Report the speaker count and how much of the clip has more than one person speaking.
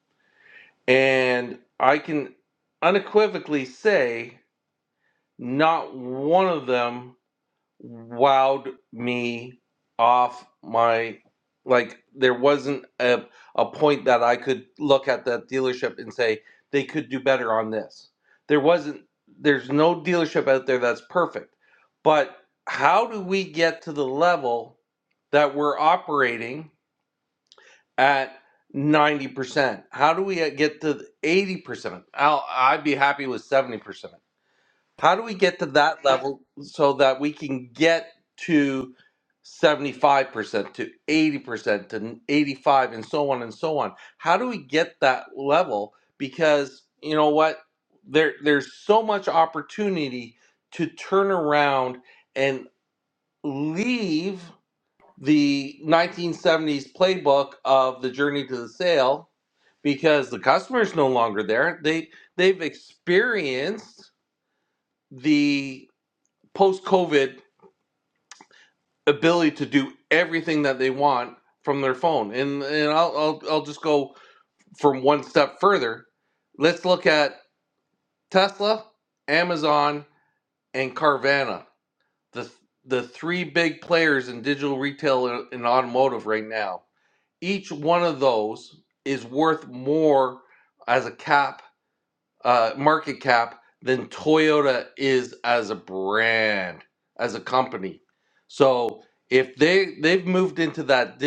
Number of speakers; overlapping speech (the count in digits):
1, no overlap